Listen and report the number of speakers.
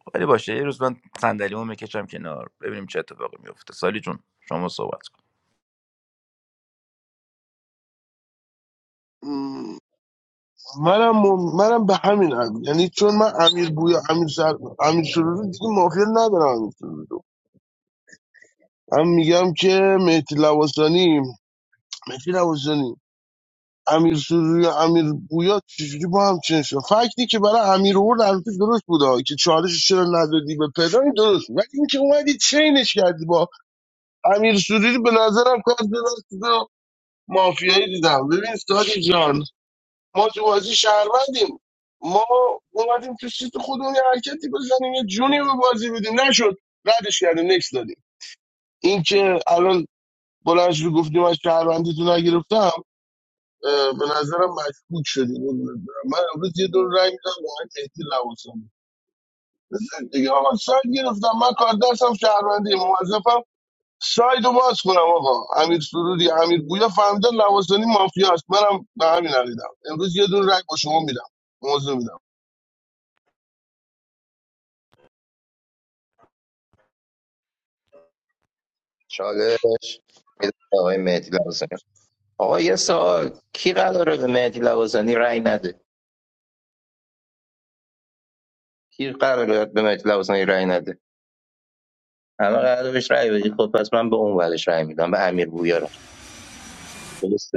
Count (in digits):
3